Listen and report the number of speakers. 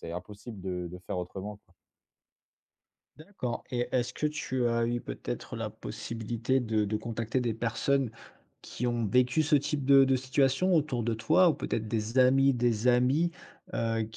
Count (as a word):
two